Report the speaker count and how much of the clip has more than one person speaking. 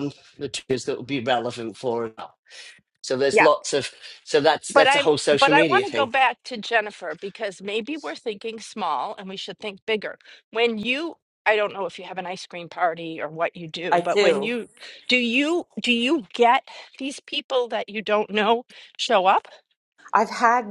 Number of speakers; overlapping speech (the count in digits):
3, about 9%